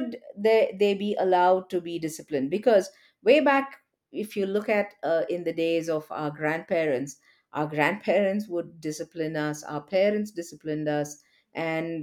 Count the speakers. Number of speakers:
1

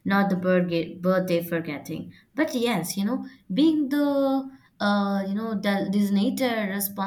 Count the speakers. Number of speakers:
1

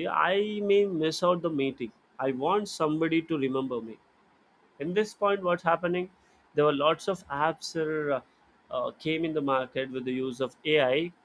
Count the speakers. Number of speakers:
1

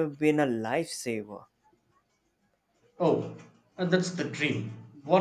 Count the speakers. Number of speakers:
2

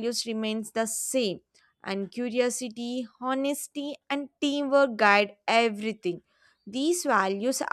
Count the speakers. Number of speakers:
1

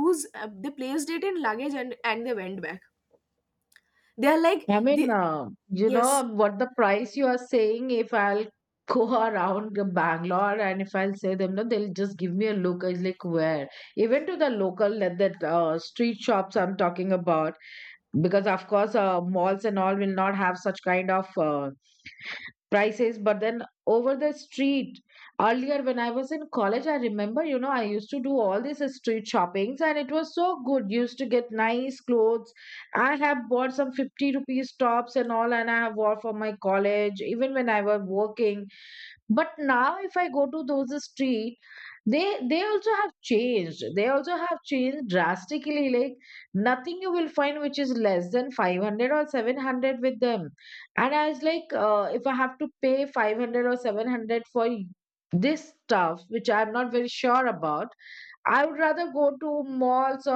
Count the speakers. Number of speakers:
2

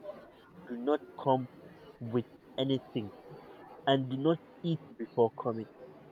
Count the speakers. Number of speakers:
1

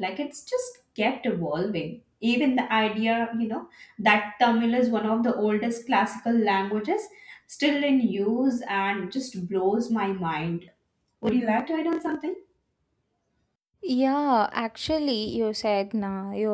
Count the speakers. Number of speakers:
2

